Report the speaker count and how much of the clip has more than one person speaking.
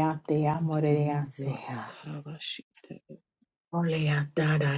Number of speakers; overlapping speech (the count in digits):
2, about 8%